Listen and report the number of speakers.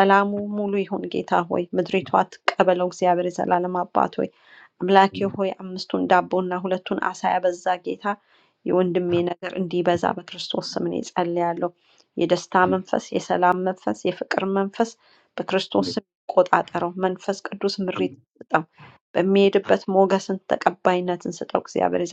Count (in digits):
1